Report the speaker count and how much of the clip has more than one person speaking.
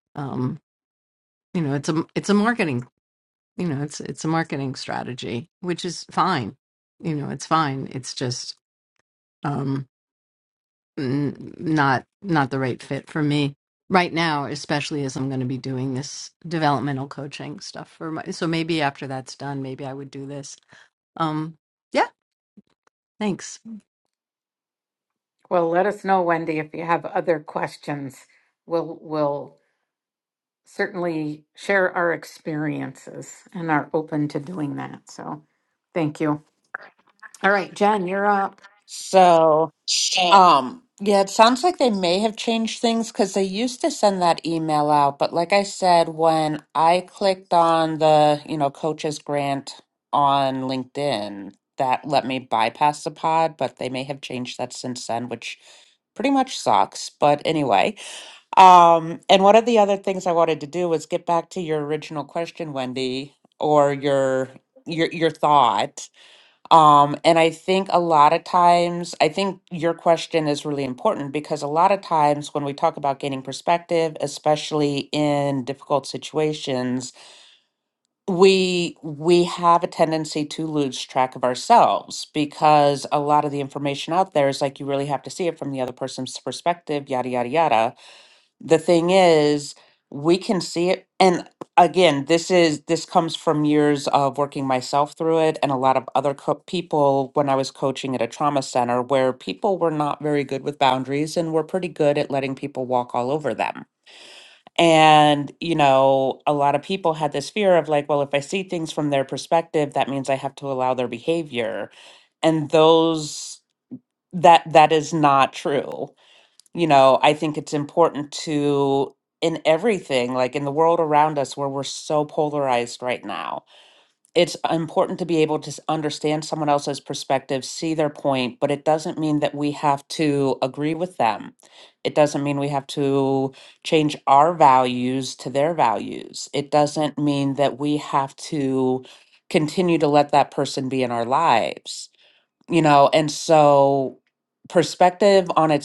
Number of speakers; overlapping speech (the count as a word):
three, no overlap